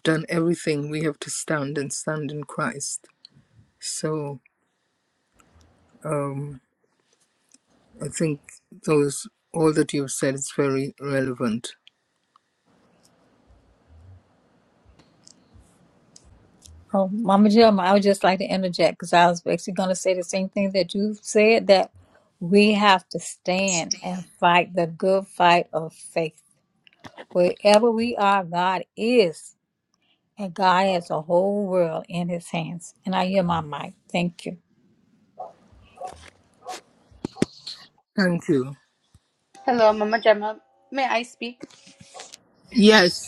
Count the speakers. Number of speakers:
3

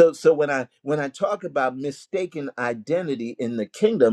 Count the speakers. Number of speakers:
1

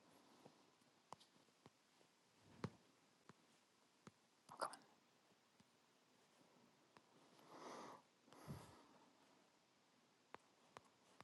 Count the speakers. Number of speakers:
0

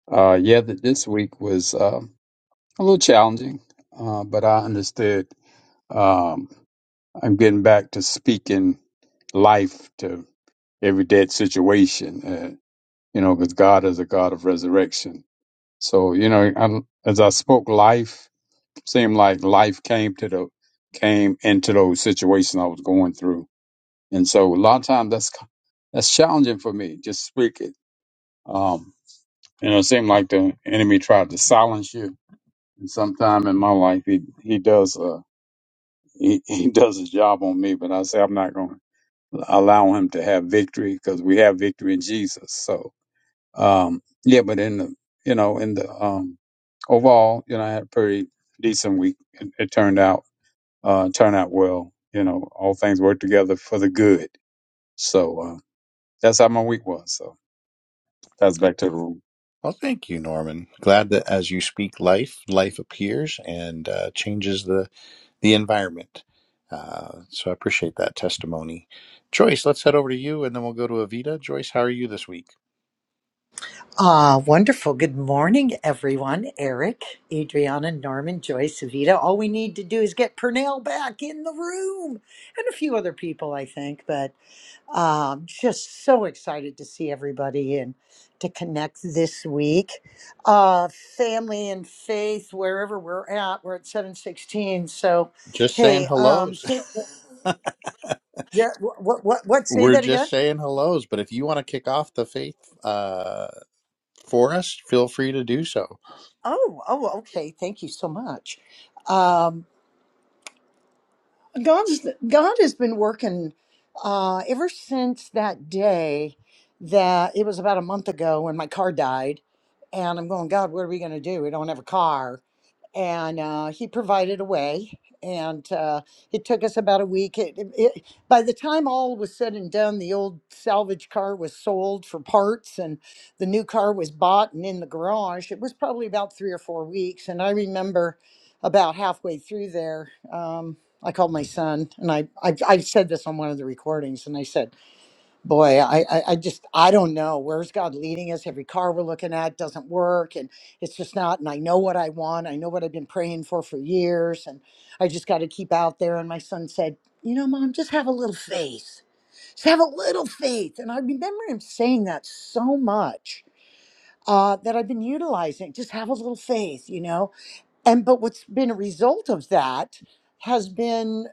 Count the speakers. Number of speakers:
3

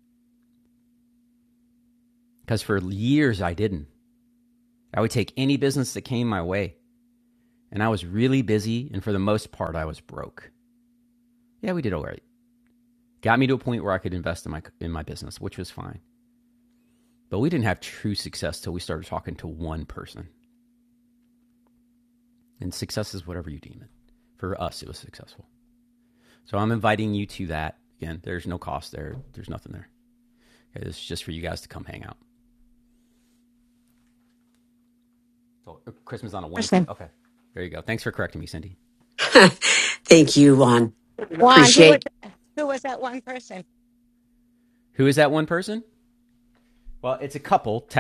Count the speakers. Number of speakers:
3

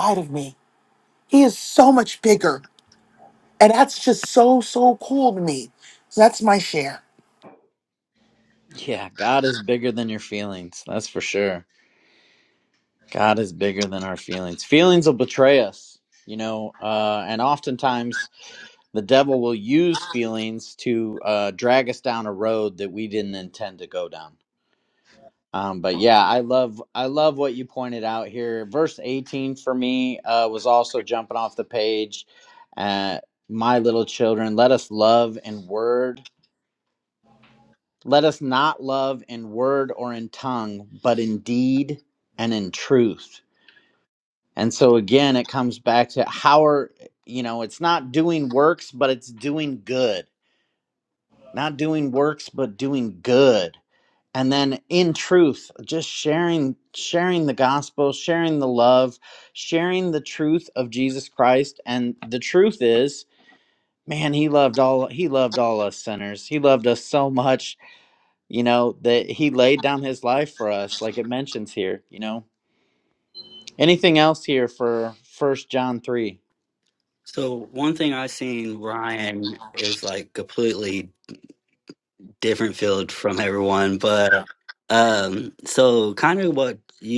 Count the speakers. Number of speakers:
3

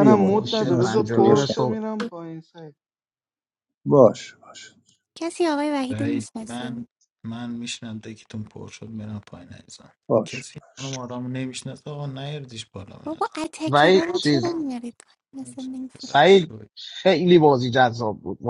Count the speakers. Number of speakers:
5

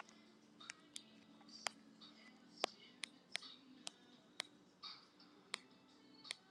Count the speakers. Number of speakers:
0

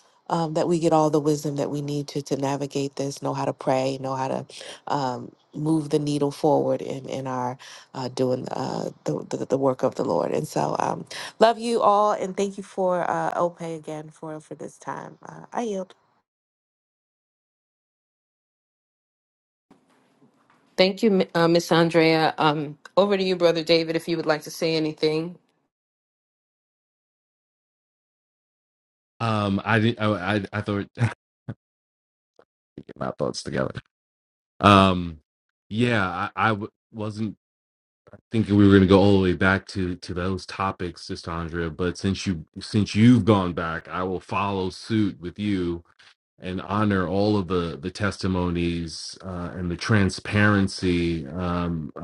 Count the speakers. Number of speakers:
3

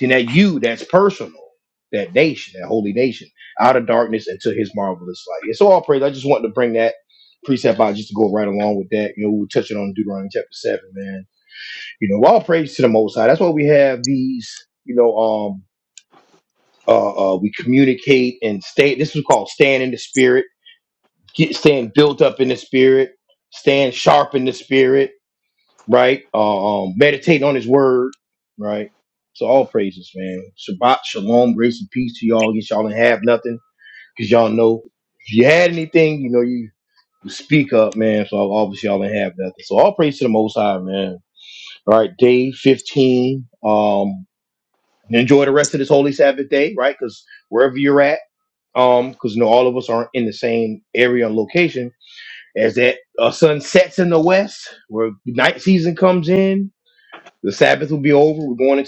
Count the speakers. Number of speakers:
1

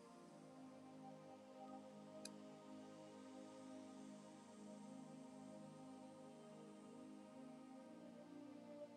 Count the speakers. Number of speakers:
0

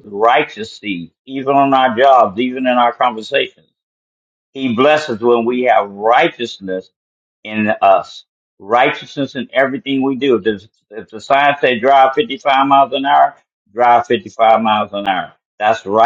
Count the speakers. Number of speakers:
1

